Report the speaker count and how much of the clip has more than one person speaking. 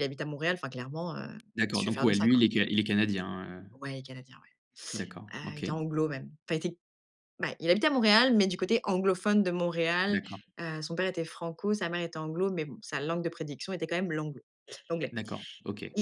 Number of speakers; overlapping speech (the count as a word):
two, about 10%